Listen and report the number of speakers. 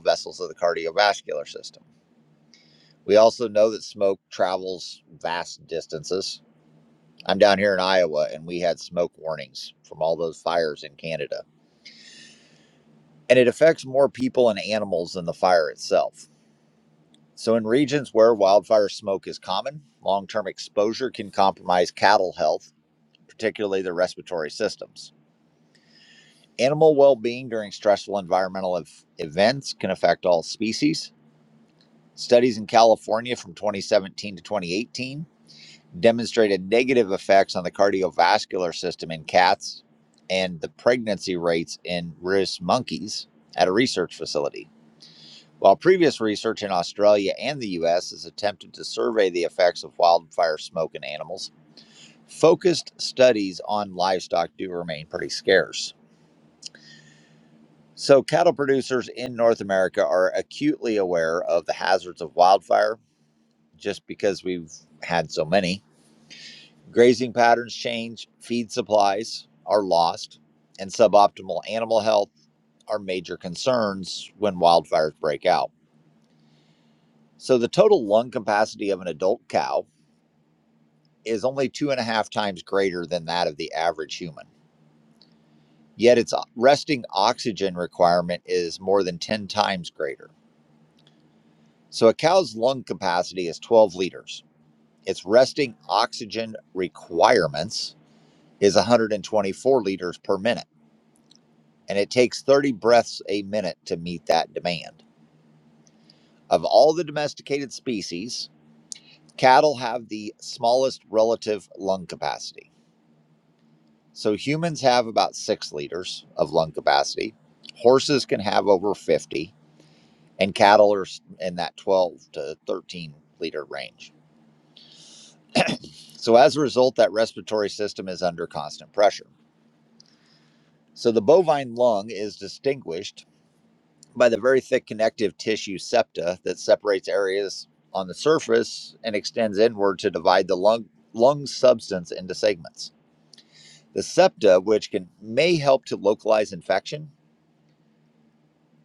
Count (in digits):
1